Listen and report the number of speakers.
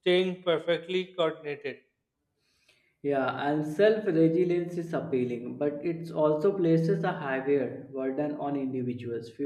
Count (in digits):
2